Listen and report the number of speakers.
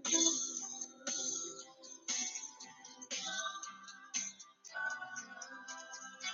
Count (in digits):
0